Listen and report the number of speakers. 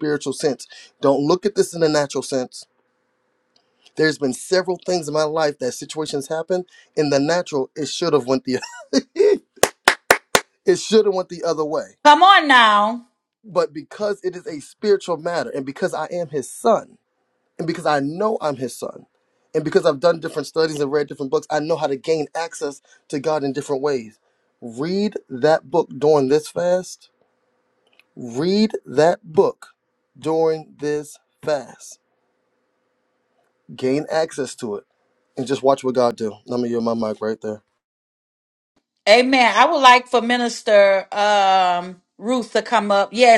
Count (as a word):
two